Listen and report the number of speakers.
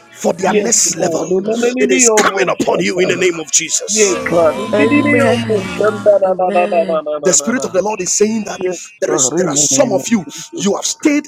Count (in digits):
3